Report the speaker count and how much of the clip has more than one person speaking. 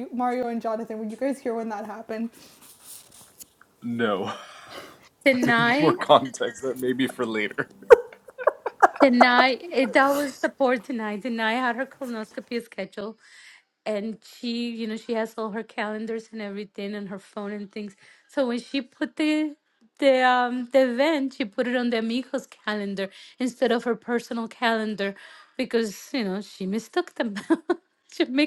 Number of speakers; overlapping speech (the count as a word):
three, about 2%